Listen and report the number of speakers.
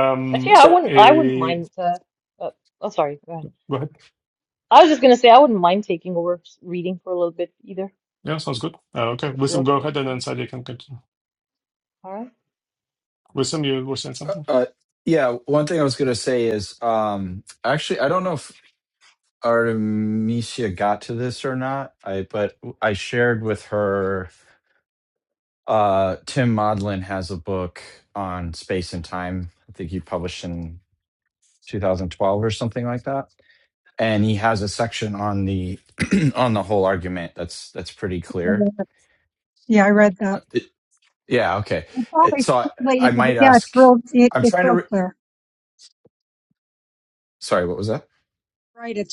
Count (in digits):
4